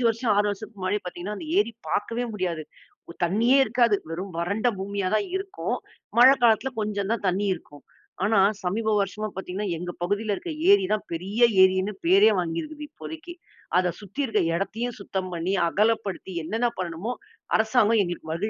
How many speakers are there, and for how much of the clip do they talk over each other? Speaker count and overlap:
one, no overlap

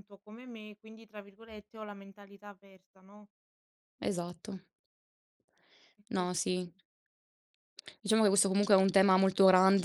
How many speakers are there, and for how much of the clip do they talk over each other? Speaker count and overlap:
two, about 4%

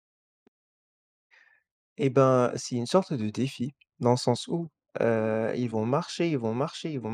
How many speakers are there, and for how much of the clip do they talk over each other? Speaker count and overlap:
one, no overlap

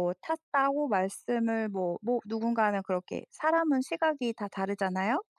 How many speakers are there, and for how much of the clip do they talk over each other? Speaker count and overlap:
one, no overlap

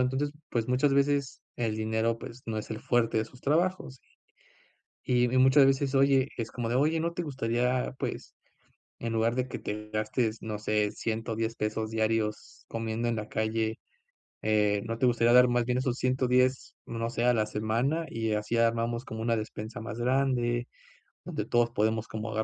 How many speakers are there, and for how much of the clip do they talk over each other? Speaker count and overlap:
one, no overlap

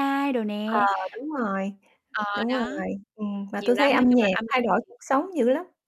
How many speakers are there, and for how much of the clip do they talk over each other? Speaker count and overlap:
two, about 26%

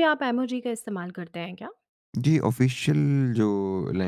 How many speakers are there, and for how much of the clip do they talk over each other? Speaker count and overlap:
two, no overlap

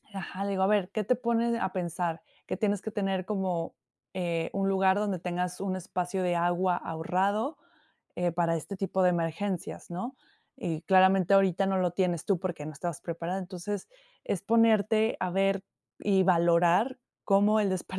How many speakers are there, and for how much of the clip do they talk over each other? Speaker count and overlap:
one, no overlap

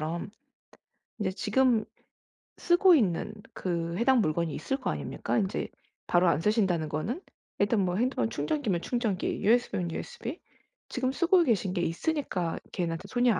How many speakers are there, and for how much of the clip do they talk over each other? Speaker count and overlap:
one, no overlap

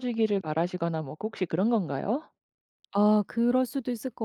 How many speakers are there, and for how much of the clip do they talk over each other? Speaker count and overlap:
two, no overlap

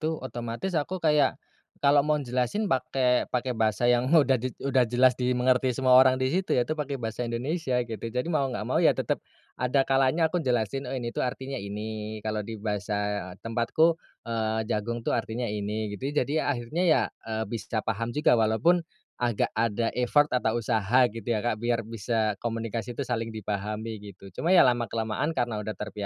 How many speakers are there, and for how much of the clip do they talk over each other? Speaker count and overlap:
one, no overlap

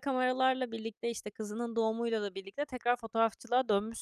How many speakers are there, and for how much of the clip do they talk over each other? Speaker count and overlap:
one, no overlap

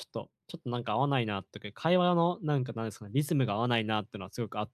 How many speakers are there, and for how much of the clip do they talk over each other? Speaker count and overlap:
one, no overlap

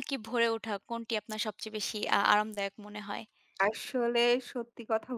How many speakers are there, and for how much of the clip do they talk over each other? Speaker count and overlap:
two, no overlap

